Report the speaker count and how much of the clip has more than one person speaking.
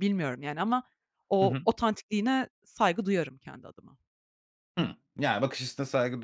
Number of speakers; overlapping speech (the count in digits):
2, about 4%